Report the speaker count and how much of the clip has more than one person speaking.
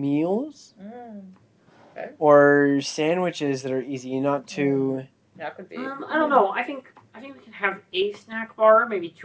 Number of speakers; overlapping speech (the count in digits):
3, about 10%